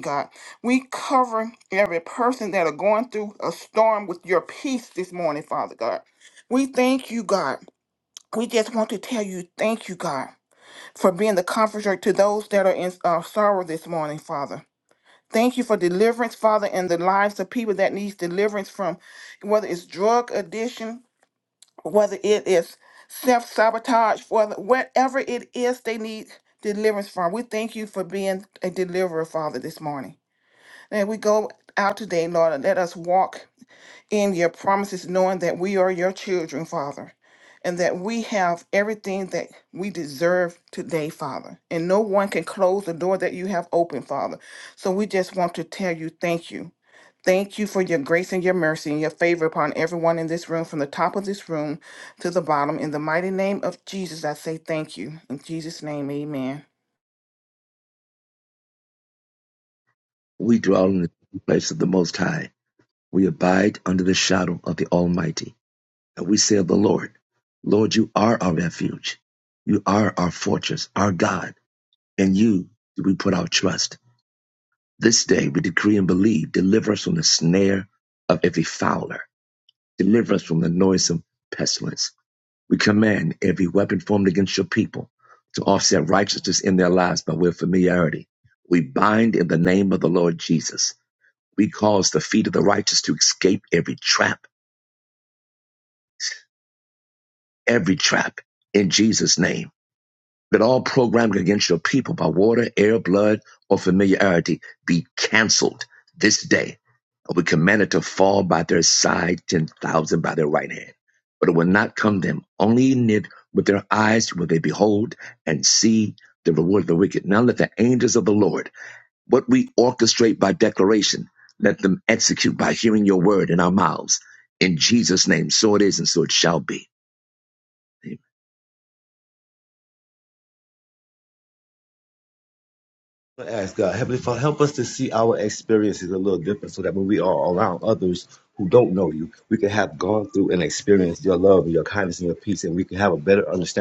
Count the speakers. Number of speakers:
three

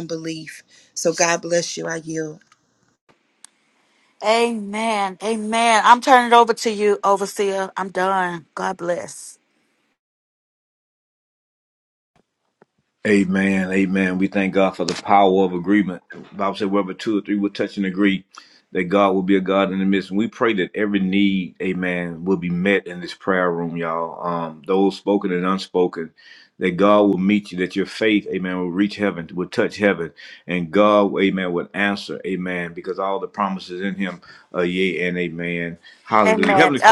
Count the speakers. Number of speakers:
three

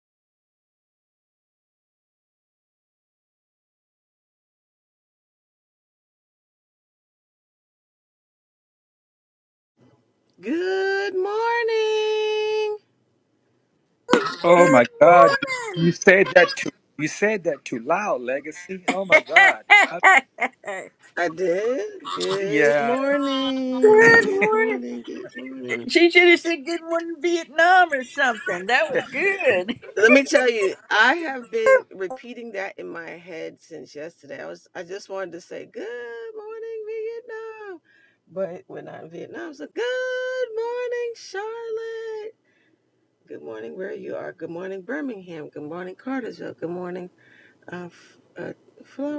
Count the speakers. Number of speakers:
three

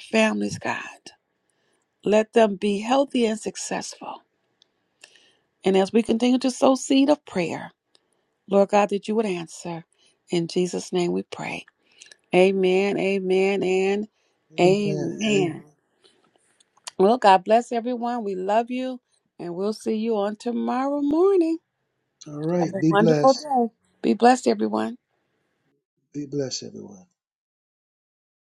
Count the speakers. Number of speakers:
two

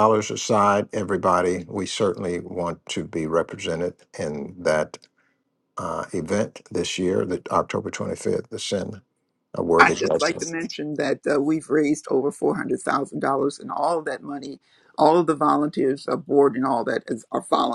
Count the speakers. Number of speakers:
two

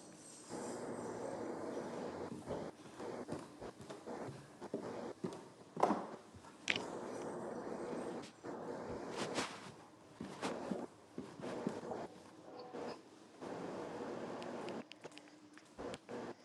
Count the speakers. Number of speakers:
zero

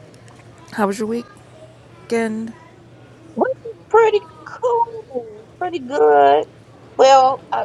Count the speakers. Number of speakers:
two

